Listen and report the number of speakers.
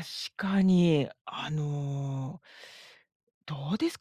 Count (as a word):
one